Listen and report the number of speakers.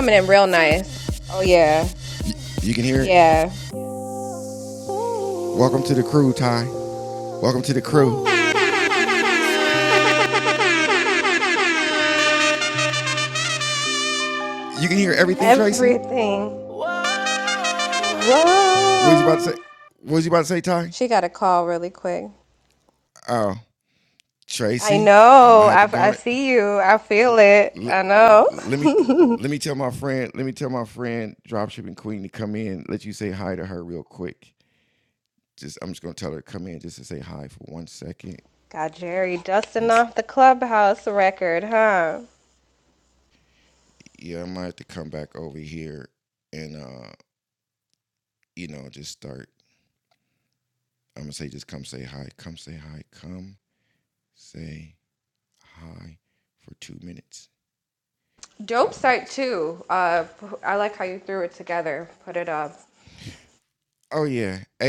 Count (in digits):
2